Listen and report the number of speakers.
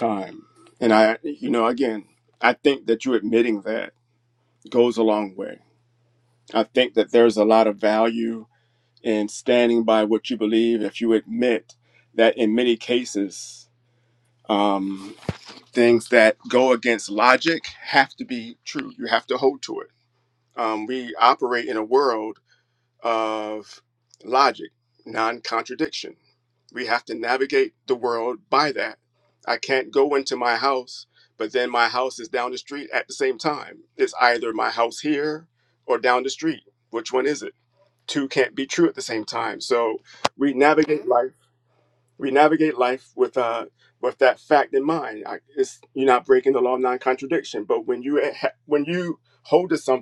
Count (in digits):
1